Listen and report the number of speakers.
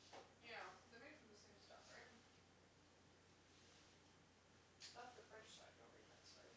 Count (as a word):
one